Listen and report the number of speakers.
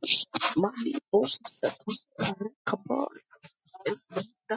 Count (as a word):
one